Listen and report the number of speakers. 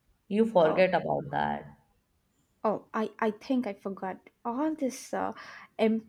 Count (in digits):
2